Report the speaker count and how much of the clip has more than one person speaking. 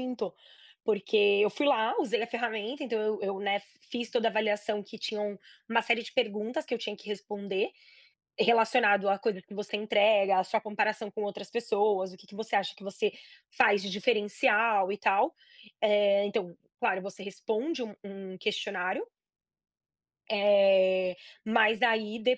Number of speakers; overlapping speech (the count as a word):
one, no overlap